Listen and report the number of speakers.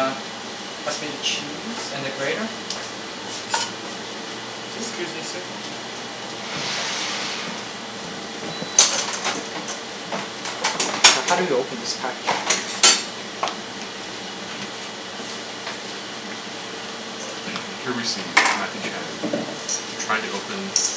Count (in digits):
2